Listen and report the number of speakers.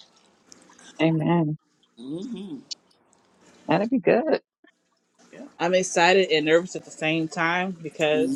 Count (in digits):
3